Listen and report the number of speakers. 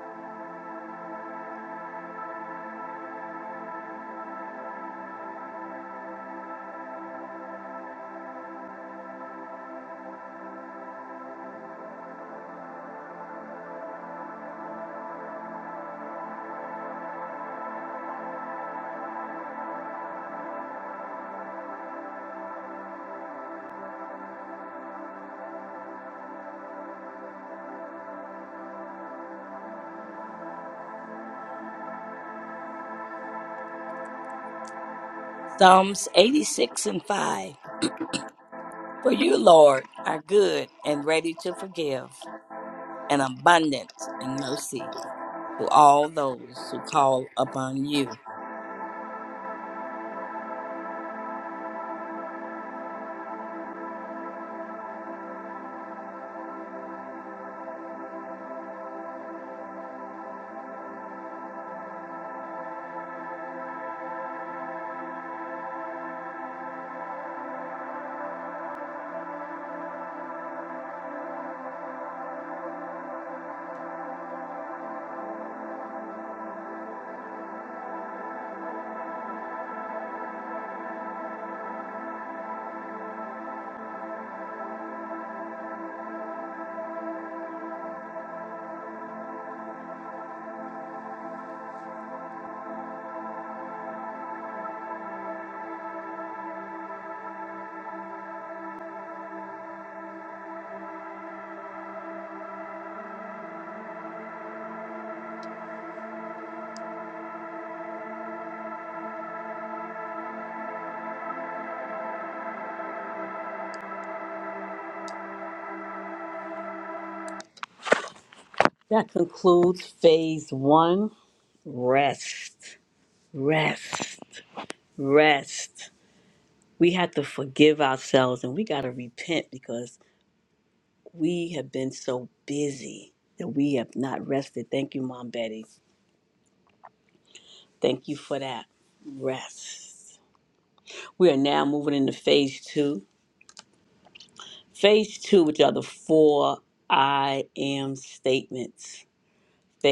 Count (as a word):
two